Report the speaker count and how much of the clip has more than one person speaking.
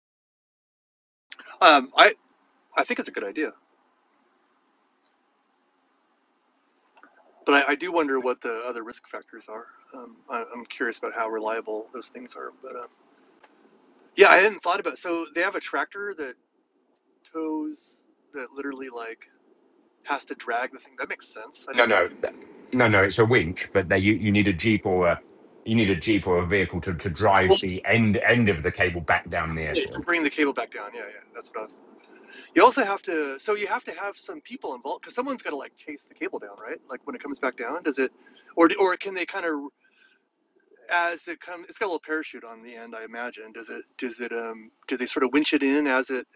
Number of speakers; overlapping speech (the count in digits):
2, about 2%